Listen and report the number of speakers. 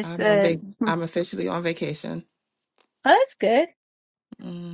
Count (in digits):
2